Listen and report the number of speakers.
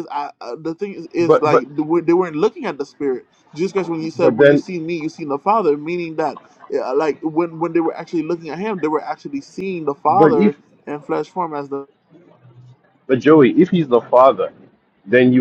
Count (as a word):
two